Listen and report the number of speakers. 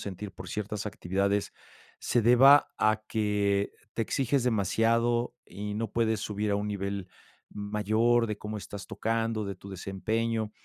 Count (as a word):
one